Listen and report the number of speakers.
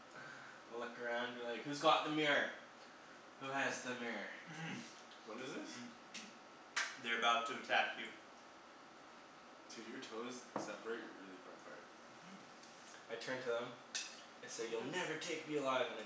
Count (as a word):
three